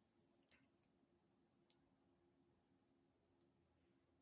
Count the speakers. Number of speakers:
0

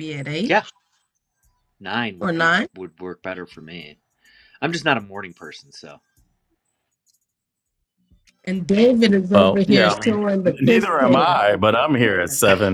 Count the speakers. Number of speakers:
3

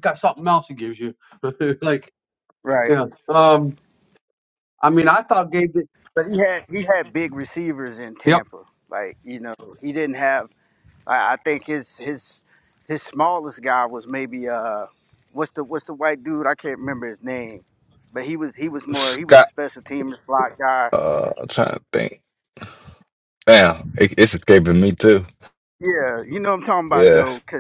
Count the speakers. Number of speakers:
3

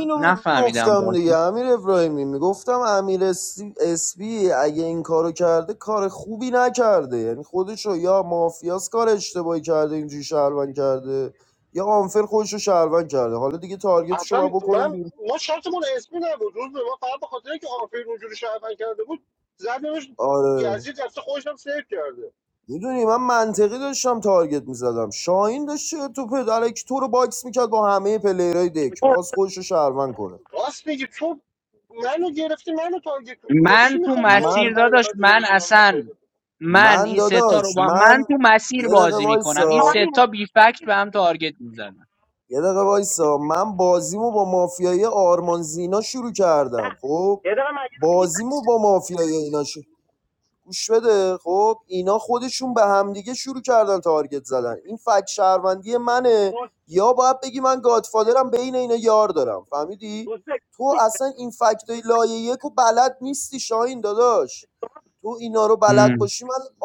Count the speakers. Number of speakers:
4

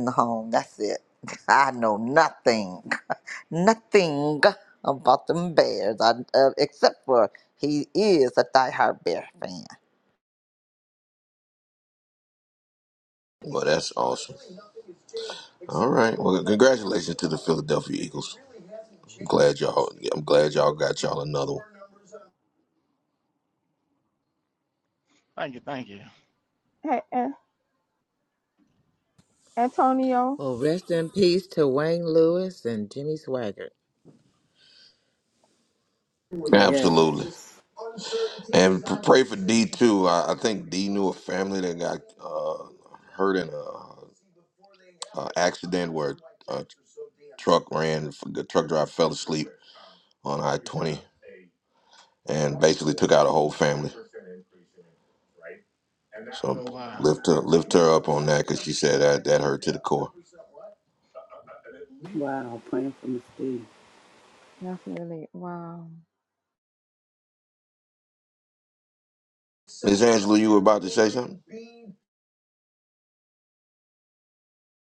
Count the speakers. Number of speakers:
6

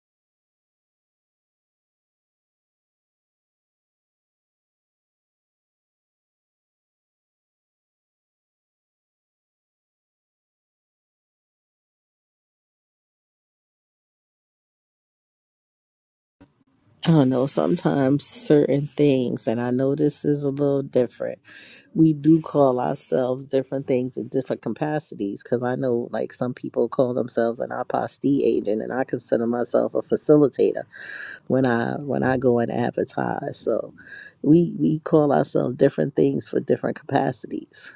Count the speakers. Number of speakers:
1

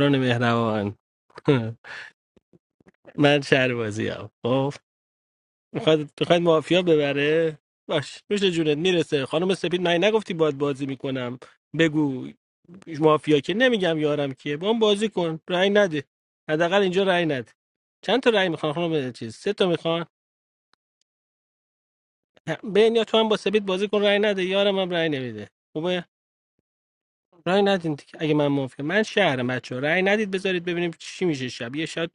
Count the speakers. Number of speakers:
1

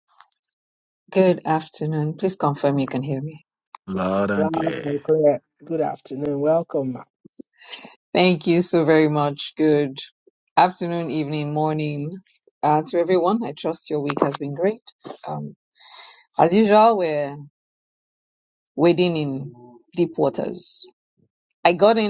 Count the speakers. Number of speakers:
3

